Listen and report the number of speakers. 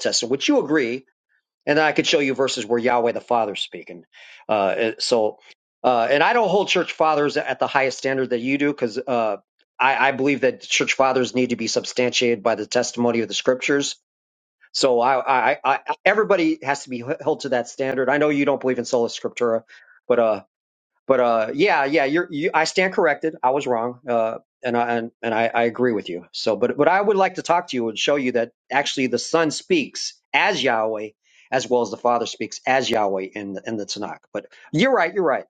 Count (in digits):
1